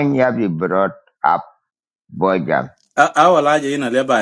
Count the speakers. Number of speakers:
2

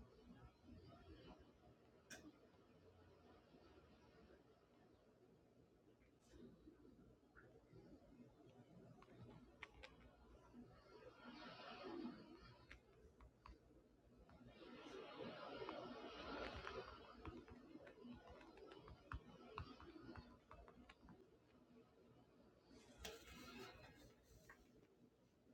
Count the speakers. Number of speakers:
0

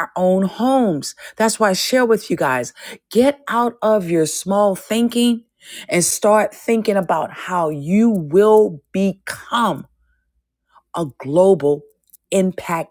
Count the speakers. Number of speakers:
1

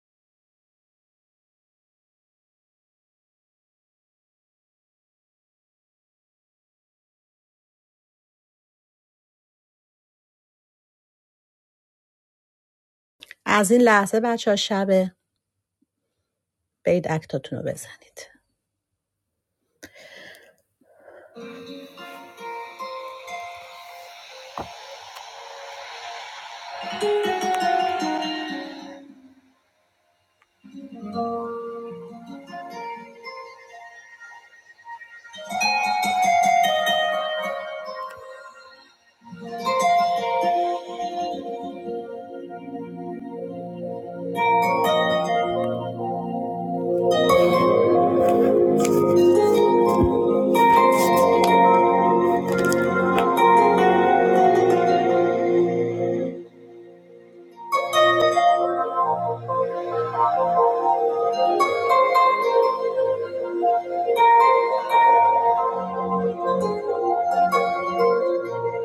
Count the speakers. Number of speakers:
1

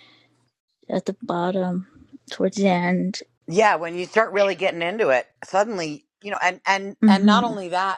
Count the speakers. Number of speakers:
2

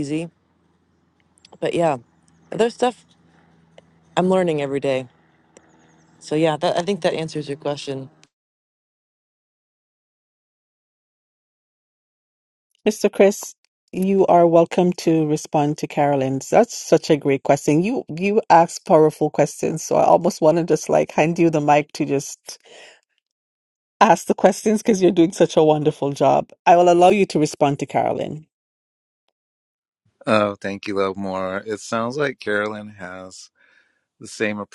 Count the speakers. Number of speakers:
3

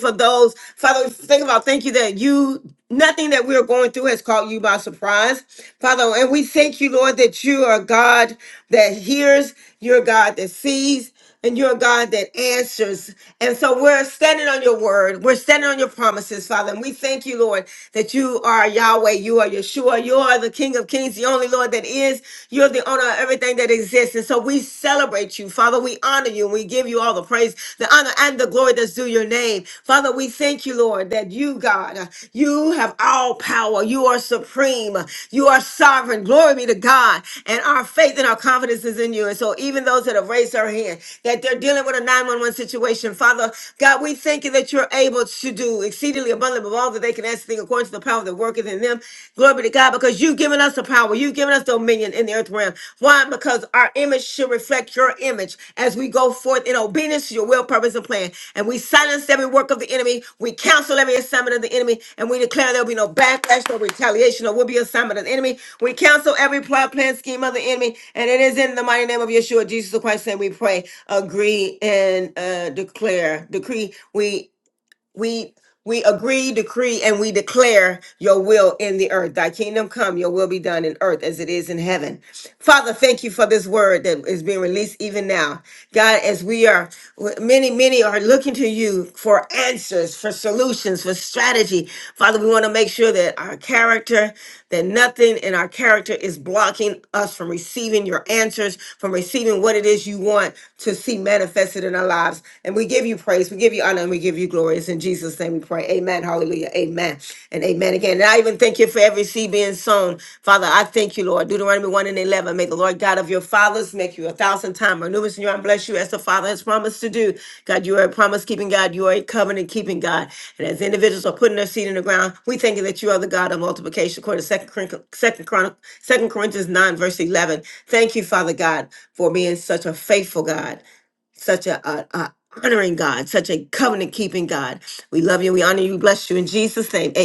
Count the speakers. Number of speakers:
1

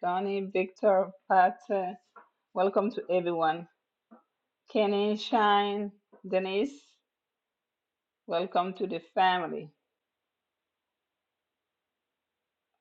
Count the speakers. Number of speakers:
1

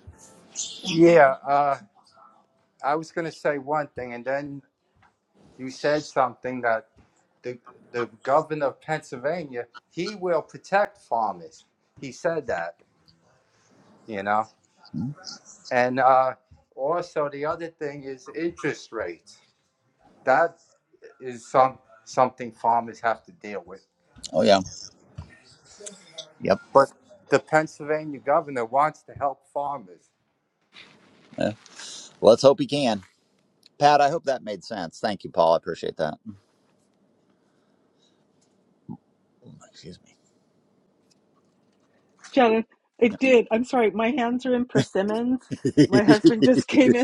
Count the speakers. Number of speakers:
3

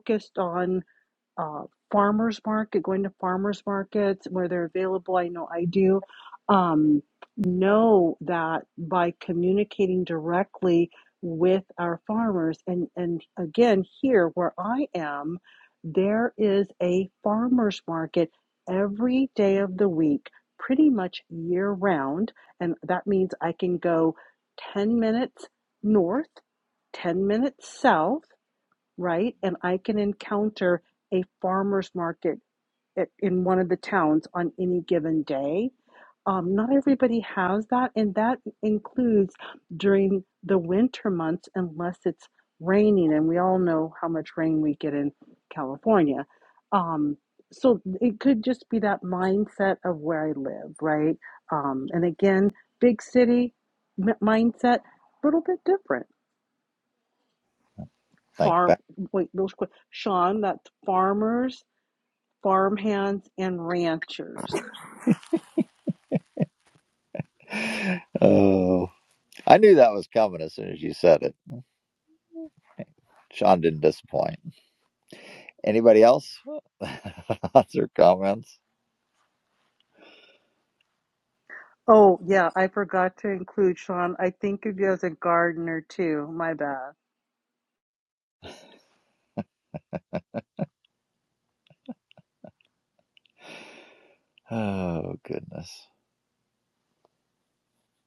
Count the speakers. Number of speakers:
2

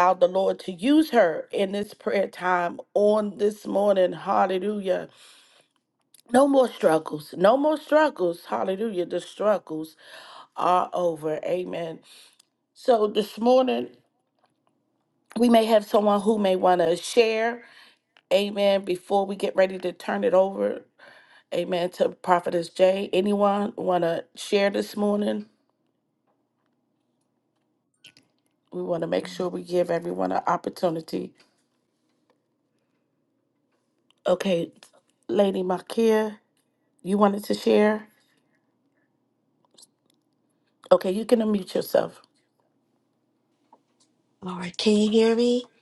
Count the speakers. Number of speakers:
2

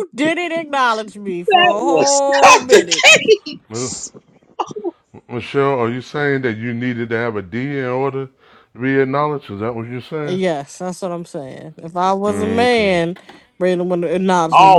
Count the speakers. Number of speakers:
3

